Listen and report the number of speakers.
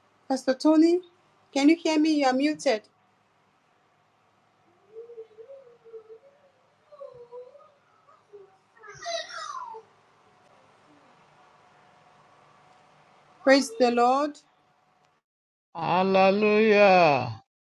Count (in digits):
2